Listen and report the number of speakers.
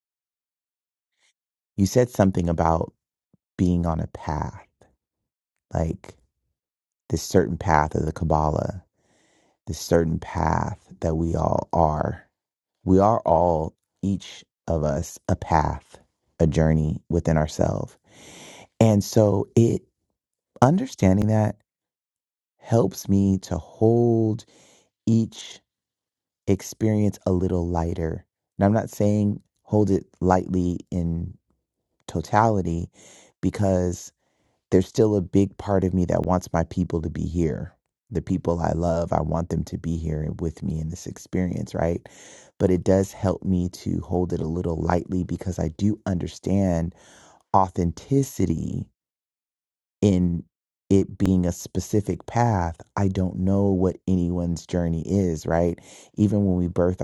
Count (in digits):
1